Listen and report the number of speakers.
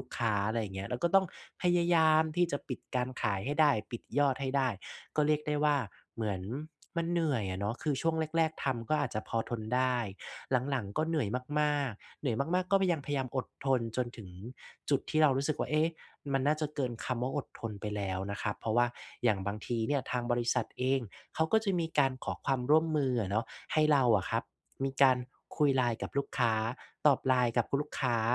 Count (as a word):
one